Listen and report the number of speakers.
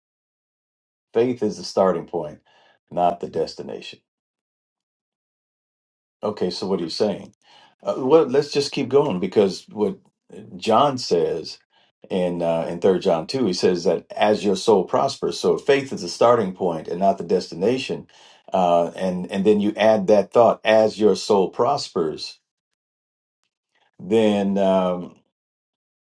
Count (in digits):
1